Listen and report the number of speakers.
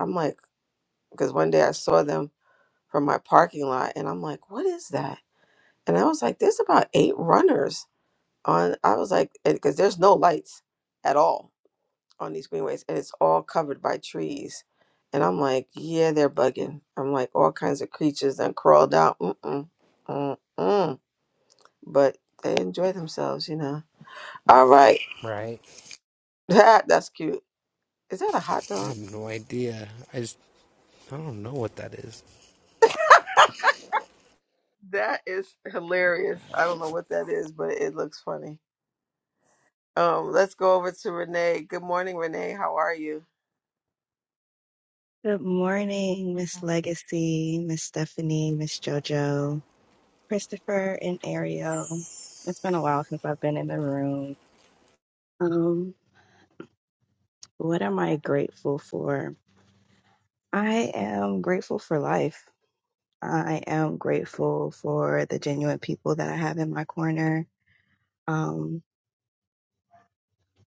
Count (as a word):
three